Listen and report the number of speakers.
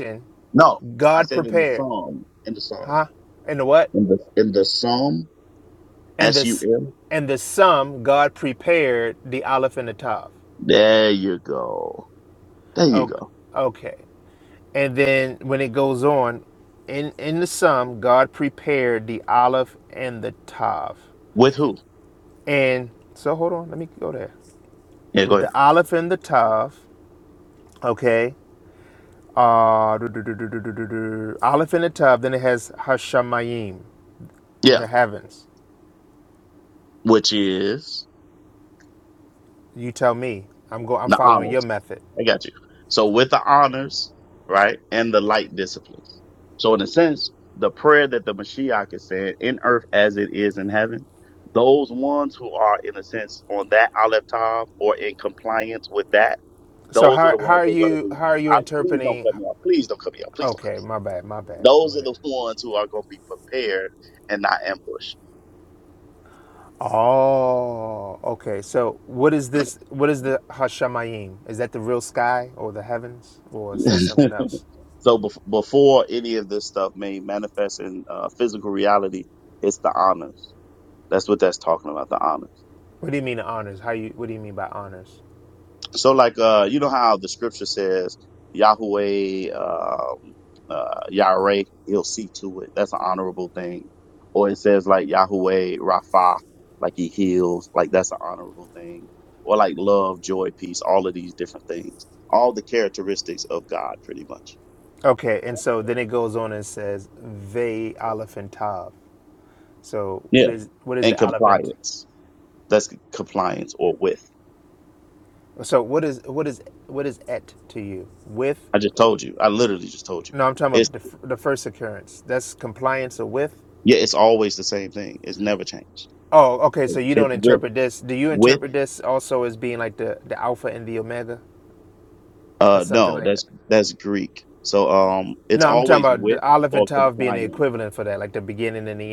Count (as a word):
two